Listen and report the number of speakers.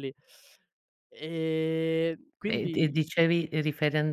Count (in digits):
2